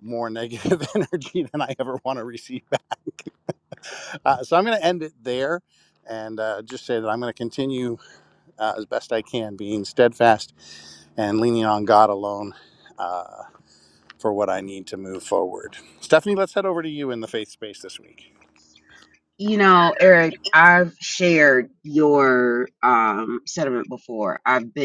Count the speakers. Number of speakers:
2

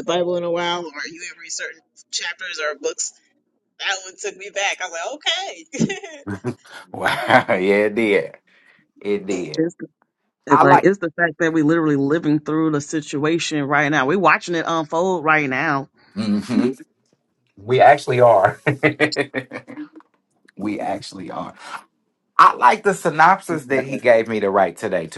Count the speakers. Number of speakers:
3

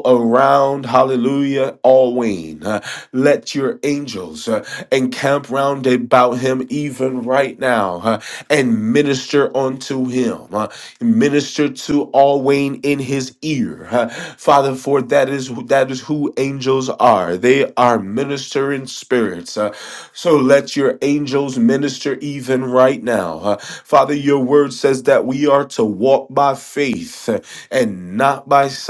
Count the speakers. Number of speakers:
1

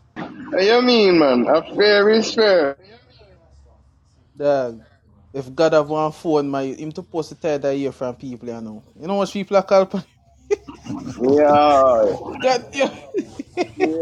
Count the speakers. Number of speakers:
2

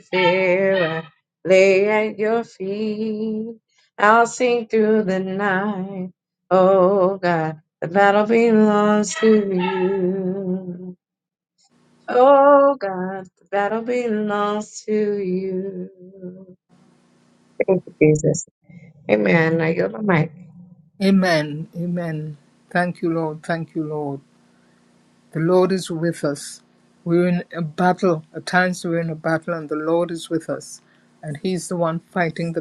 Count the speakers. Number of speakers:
2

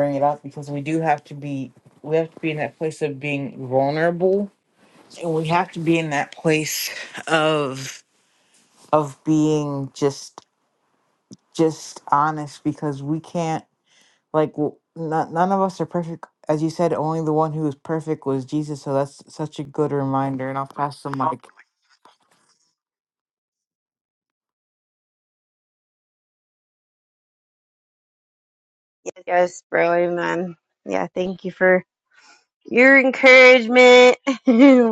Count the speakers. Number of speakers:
2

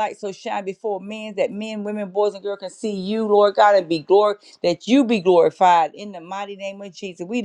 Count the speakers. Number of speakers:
1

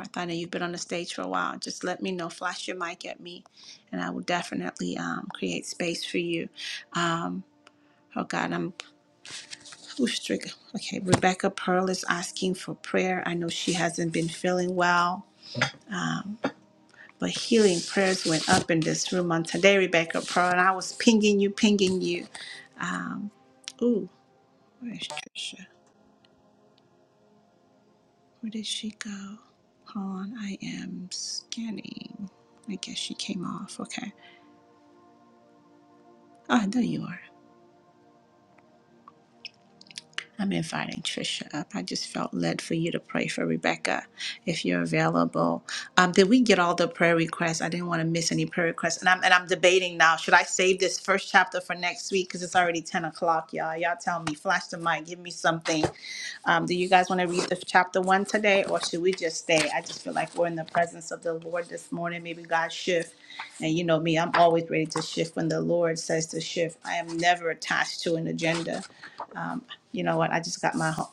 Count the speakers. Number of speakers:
1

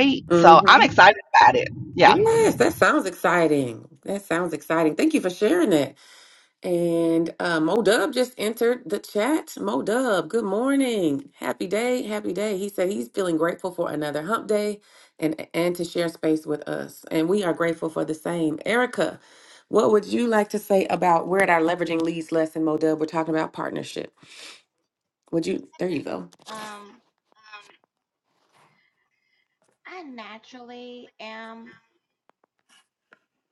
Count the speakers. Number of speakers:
3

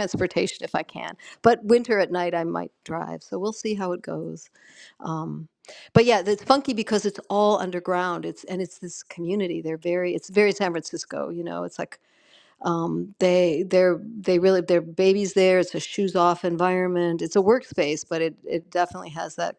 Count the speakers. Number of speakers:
1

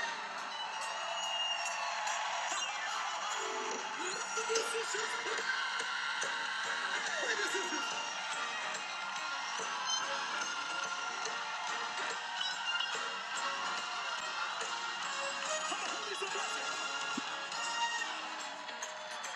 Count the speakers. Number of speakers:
0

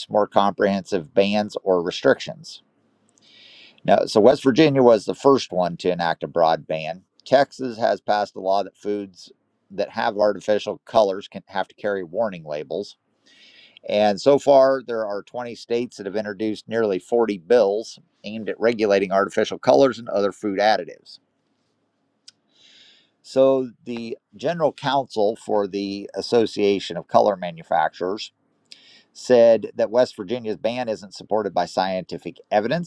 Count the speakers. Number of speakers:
1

